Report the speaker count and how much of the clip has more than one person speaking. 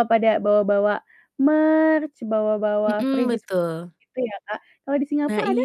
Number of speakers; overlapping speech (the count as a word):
two, about 17%